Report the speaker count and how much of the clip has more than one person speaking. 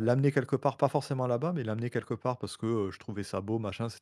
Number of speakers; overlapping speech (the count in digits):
1, no overlap